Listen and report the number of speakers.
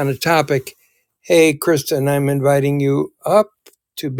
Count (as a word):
one